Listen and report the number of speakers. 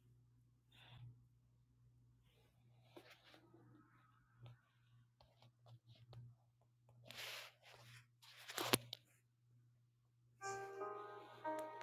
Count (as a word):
zero